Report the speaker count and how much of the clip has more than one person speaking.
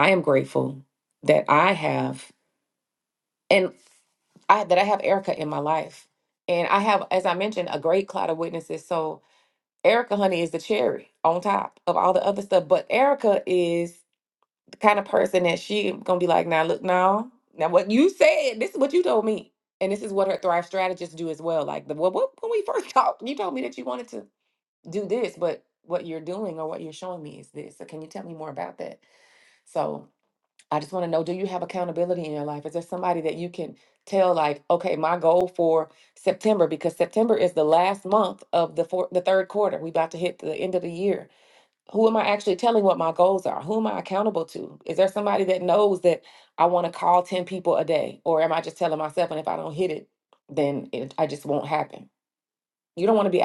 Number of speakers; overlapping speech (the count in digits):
1, no overlap